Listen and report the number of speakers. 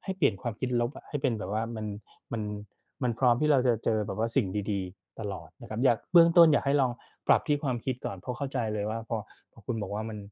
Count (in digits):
1